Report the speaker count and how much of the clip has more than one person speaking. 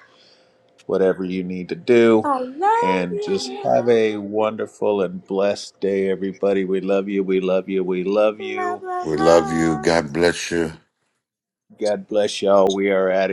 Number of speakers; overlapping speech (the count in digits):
3, about 20%